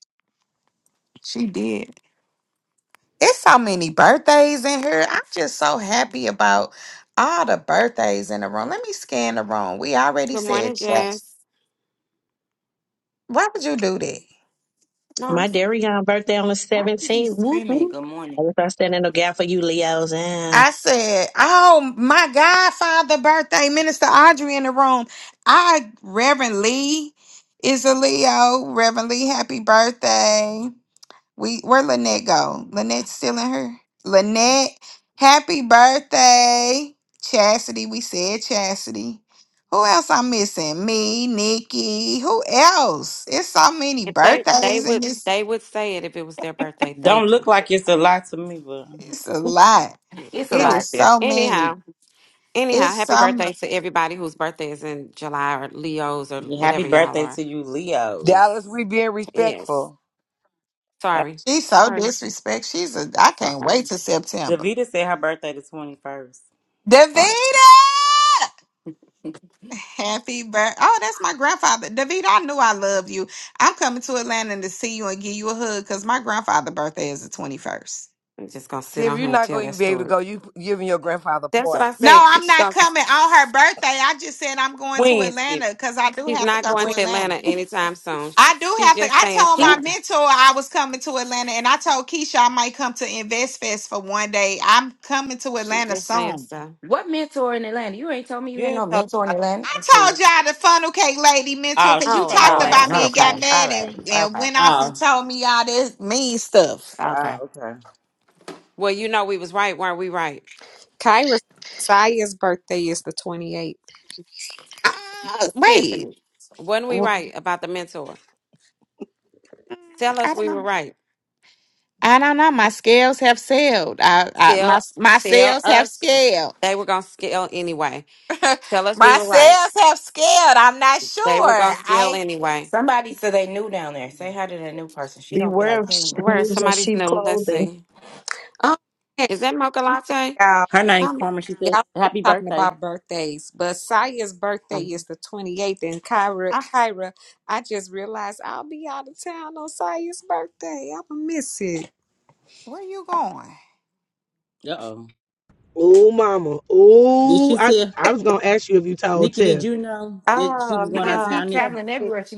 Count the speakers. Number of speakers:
eight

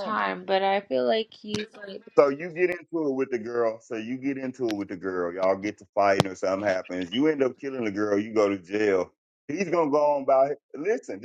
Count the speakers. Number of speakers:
two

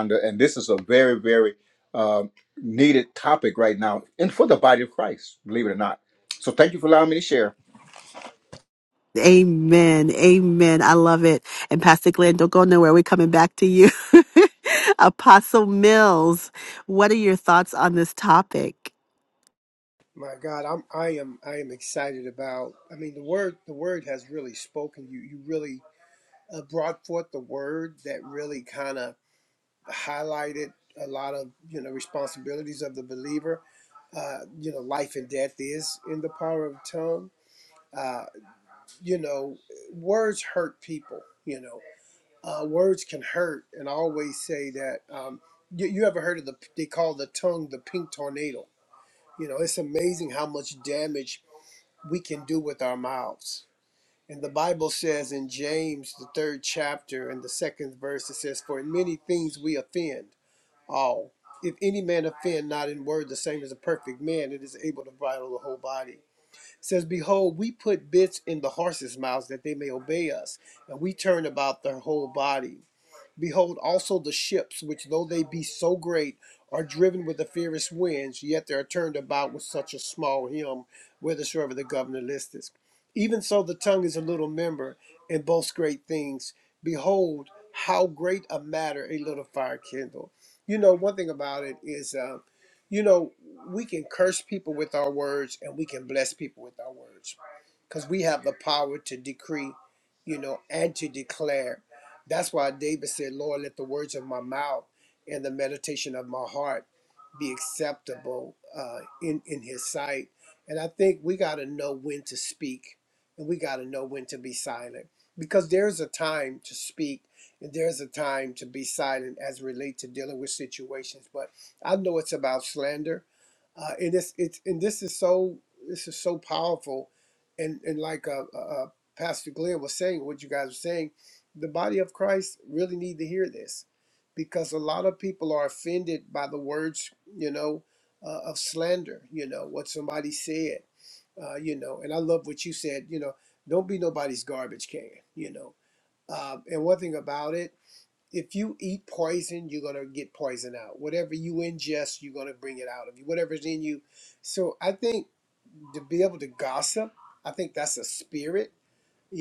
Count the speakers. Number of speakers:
three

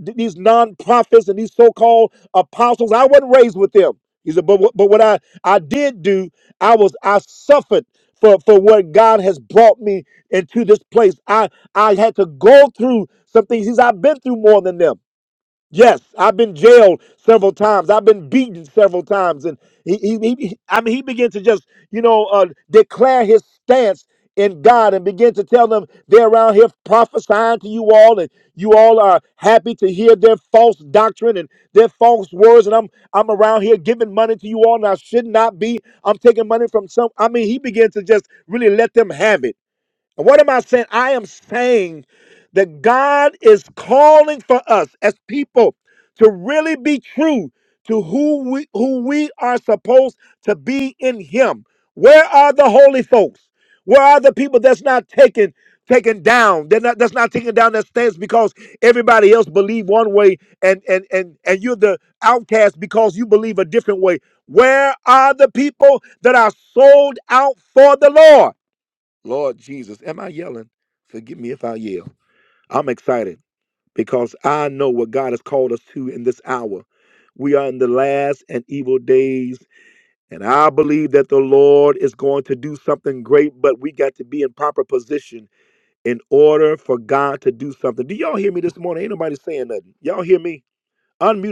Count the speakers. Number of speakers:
one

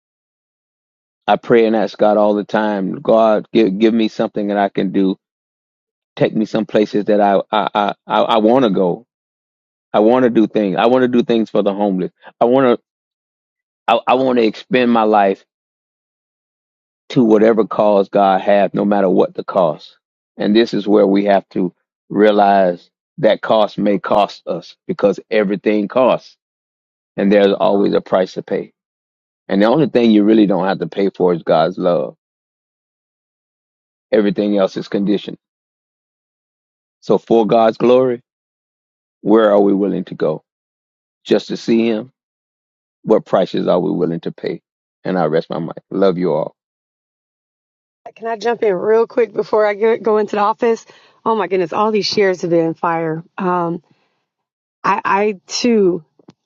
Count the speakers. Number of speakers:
two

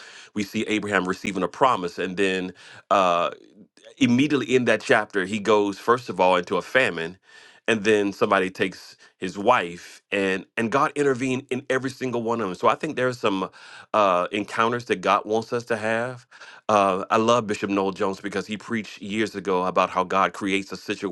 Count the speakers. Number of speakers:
one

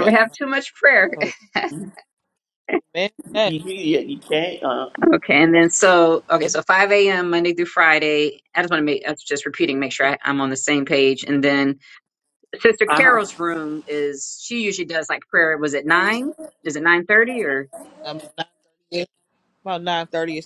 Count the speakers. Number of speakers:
three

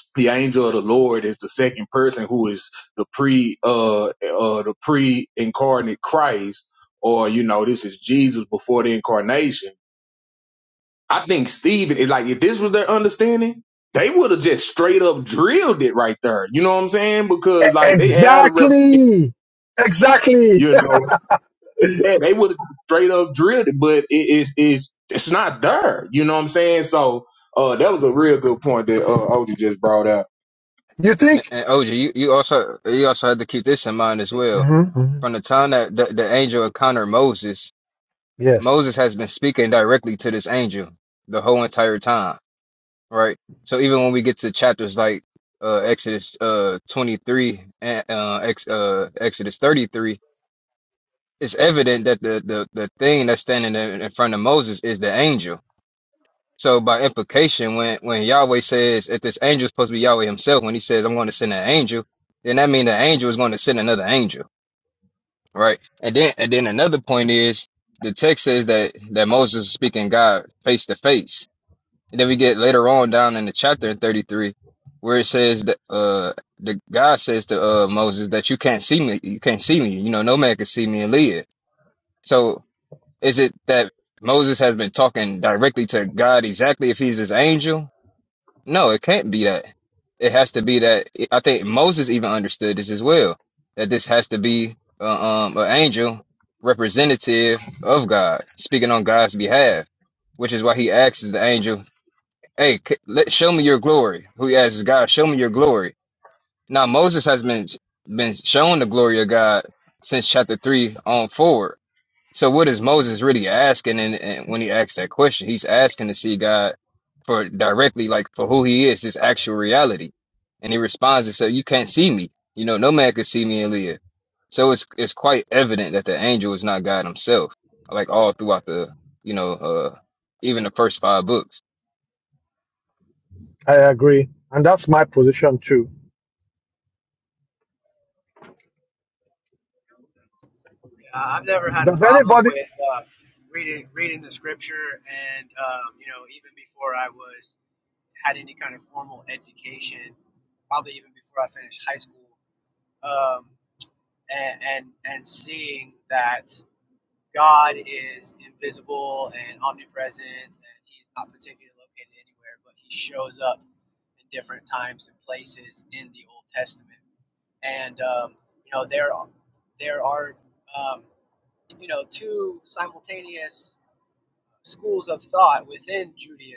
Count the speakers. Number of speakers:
four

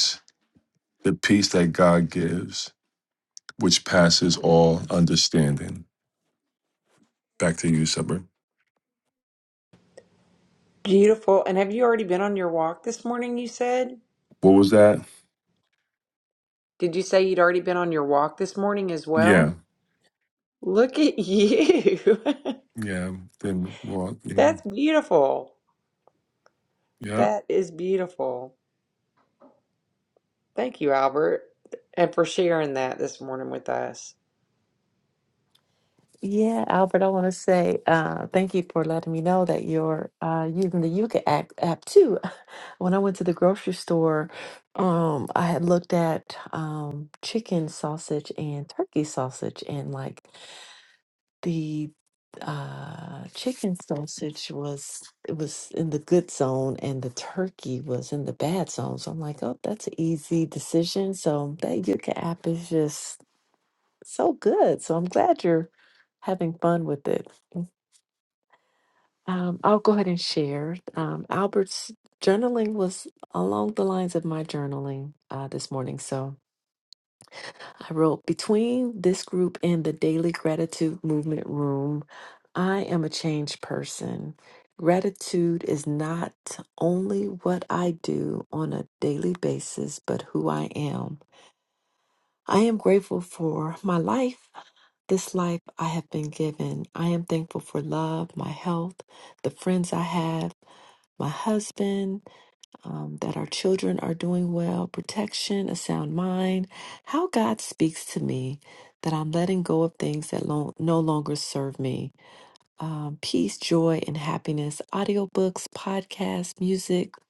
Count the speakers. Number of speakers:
three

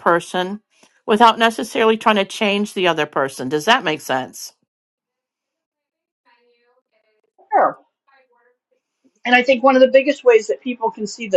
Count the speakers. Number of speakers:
two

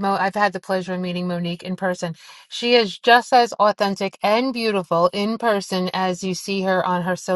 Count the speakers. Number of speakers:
one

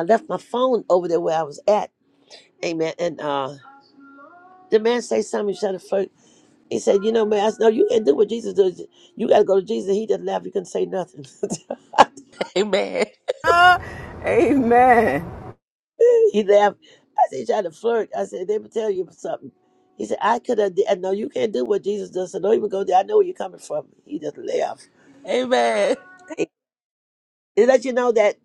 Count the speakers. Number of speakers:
three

